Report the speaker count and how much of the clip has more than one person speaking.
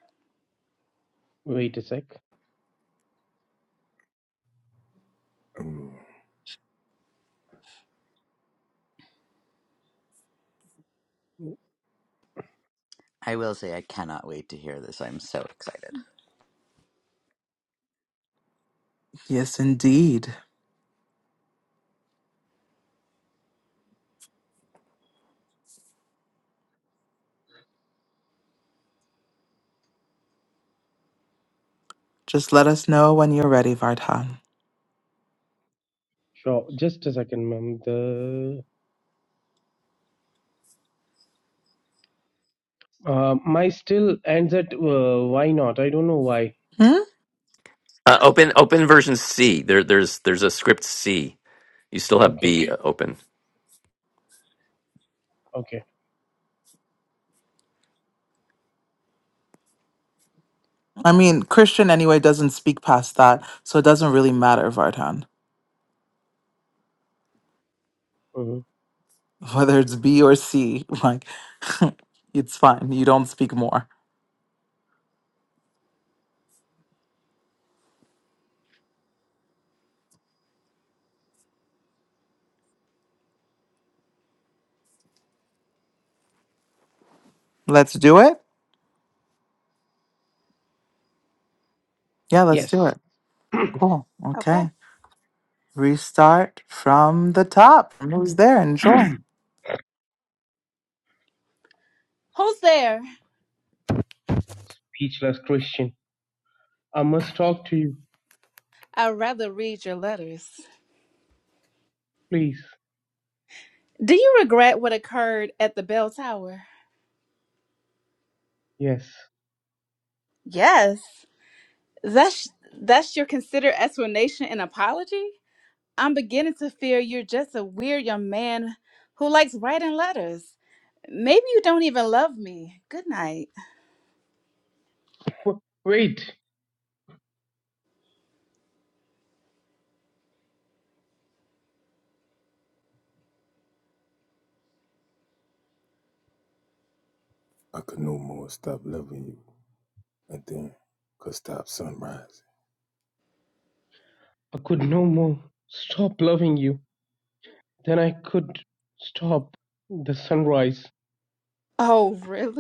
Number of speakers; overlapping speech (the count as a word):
six, about 1%